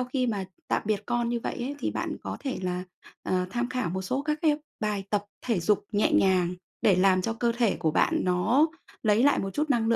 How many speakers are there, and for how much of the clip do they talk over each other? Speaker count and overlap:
1, no overlap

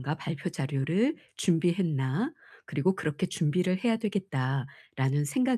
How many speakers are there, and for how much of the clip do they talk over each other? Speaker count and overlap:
1, no overlap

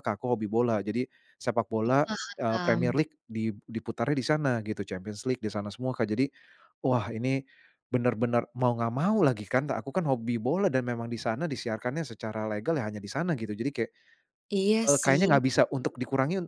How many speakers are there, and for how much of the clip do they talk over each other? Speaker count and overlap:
2, about 6%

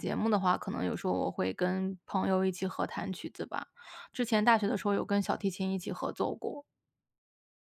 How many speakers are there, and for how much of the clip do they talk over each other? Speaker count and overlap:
1, no overlap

